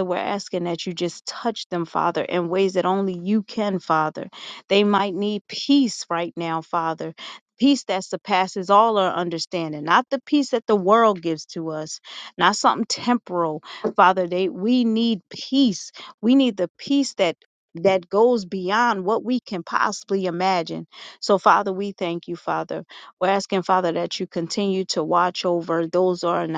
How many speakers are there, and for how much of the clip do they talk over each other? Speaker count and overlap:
1, no overlap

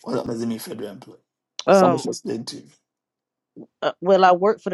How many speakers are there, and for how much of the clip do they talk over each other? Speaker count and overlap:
2, about 5%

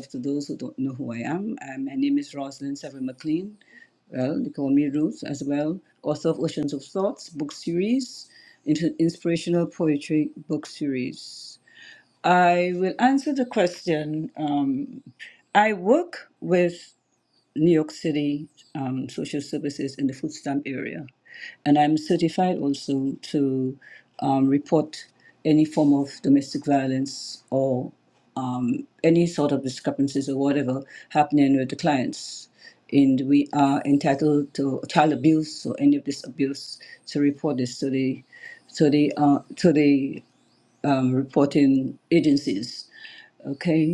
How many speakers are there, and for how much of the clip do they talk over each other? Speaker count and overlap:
1, no overlap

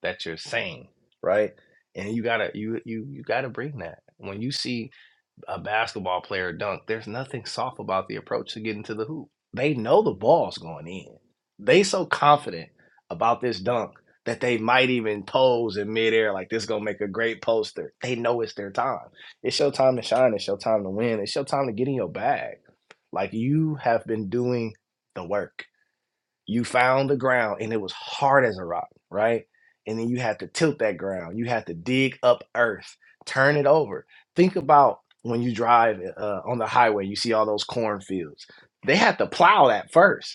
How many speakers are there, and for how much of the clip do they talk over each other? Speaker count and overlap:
1, no overlap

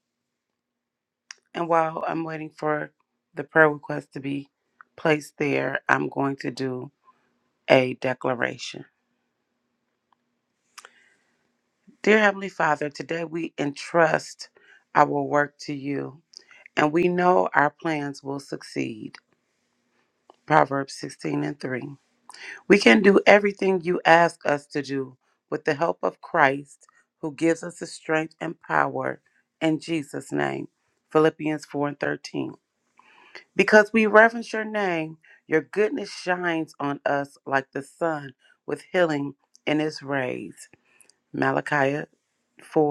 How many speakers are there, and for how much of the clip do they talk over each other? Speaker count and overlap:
1, no overlap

